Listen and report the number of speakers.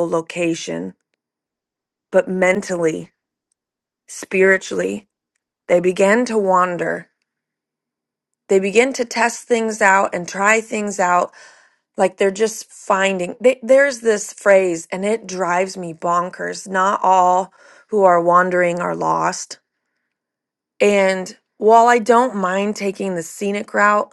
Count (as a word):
one